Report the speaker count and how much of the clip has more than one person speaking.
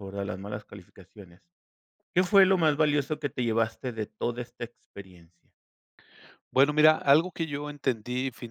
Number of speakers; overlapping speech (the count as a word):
two, no overlap